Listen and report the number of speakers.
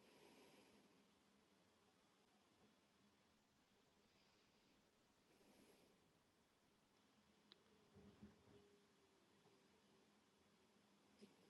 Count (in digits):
0